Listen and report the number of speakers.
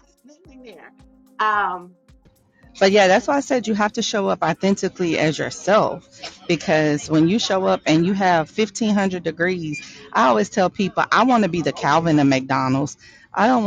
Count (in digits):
2